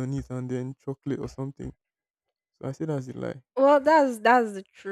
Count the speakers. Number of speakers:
2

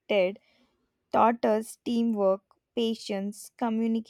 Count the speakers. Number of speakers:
1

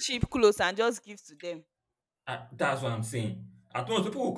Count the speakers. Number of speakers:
2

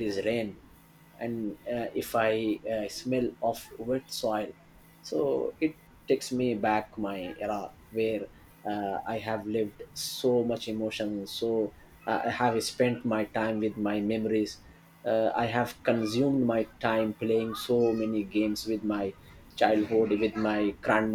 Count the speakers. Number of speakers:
1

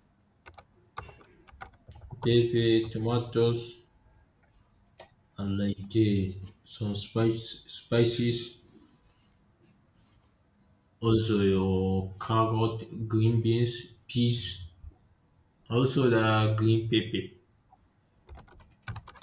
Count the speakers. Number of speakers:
1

